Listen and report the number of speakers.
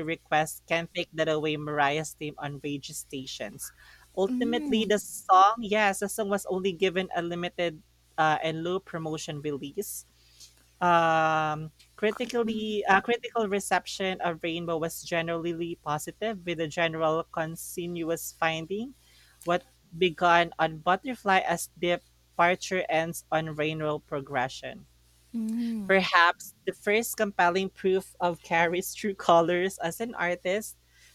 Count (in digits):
2